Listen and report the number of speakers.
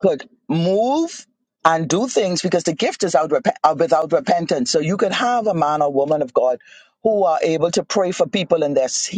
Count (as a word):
one